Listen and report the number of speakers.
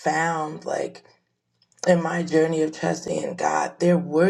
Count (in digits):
1